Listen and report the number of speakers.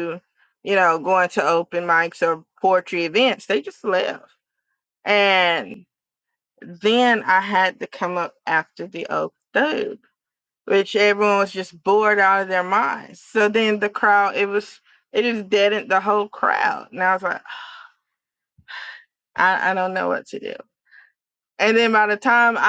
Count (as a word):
one